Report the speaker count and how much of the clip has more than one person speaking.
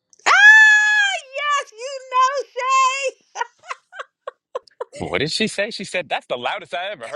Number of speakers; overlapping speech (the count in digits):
2, no overlap